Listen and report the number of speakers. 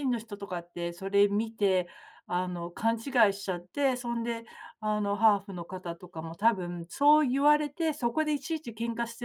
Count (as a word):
one